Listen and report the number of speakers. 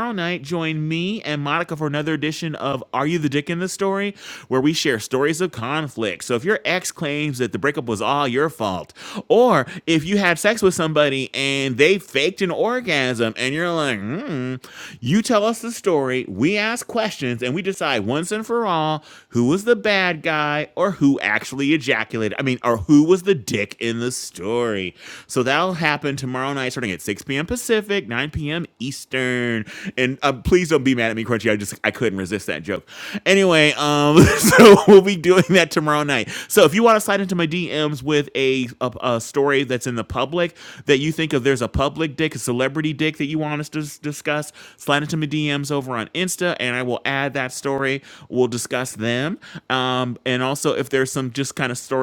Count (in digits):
1